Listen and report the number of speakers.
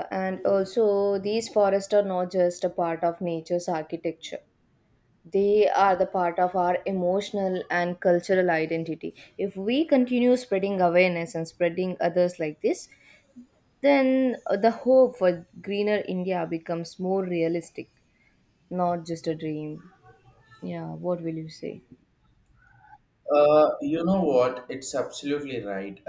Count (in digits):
2